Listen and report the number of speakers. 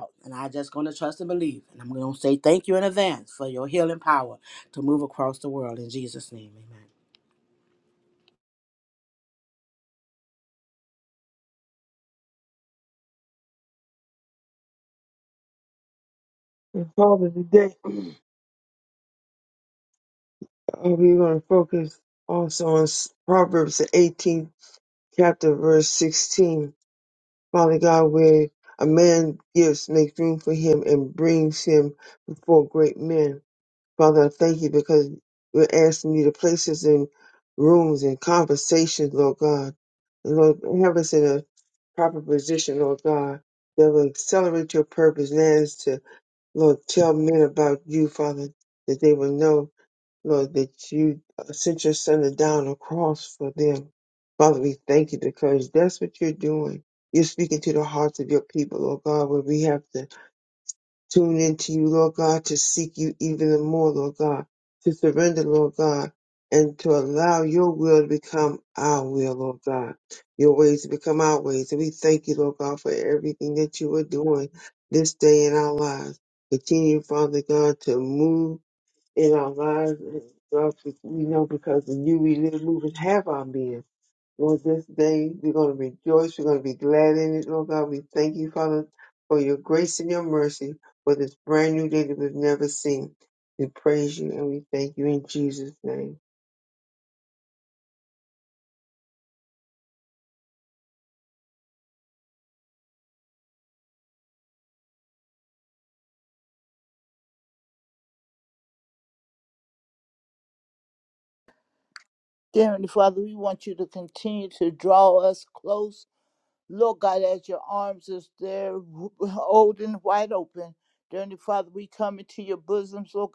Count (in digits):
3